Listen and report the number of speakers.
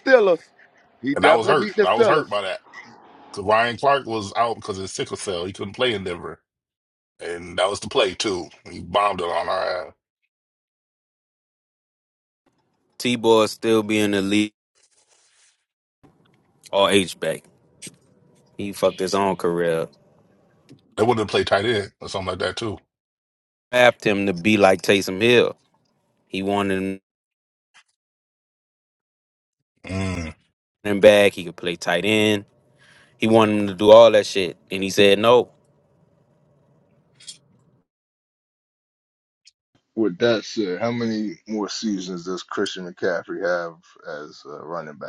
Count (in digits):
4